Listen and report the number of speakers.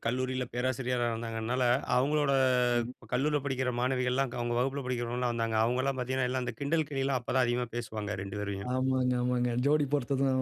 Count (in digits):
2